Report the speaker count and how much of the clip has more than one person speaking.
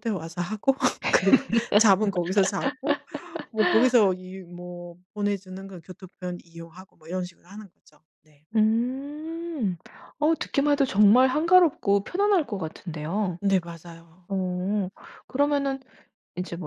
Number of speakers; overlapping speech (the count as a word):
two, no overlap